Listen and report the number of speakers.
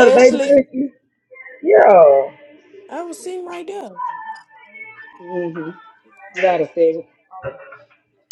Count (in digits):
3